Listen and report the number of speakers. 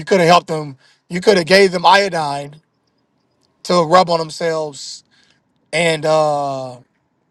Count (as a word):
one